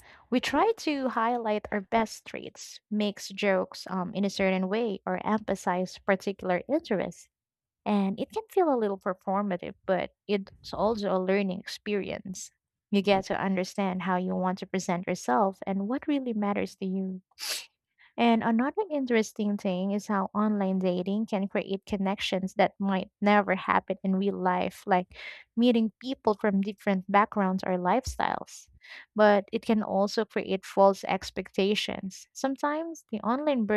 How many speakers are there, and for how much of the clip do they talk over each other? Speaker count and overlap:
1, no overlap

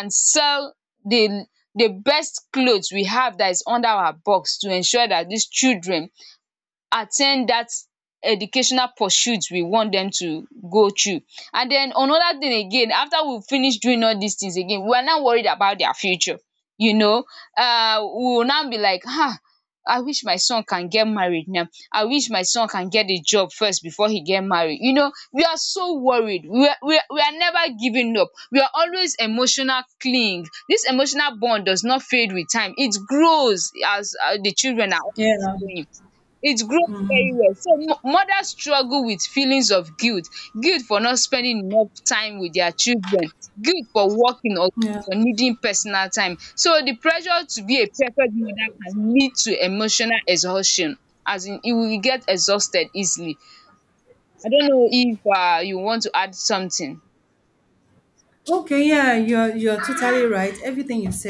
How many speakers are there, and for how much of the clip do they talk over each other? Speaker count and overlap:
2, no overlap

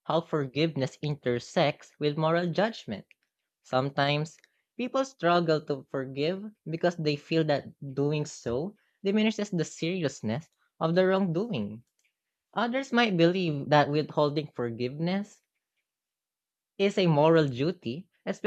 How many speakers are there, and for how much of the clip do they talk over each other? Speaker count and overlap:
1, no overlap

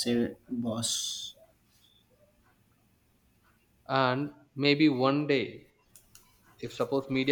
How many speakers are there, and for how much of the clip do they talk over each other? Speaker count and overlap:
2, no overlap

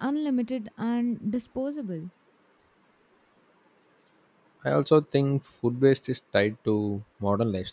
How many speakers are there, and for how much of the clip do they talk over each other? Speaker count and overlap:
2, no overlap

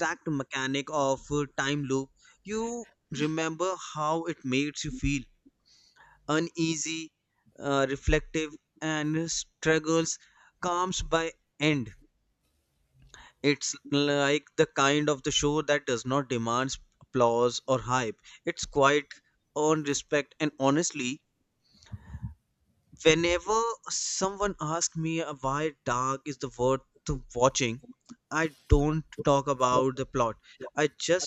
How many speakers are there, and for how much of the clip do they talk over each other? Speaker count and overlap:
1, no overlap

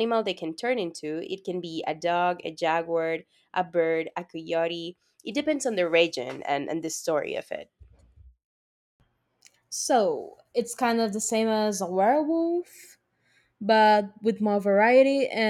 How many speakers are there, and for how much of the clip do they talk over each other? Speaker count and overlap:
2, no overlap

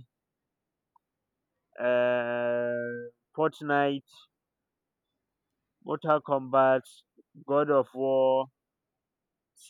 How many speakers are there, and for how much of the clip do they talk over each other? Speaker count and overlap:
1, no overlap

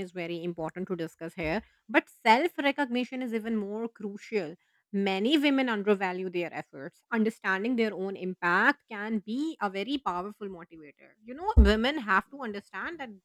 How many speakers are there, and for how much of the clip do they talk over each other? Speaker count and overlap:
1, no overlap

